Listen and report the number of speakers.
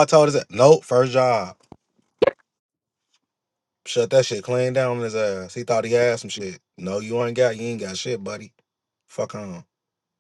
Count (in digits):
1